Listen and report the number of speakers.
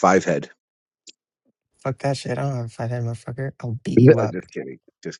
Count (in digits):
2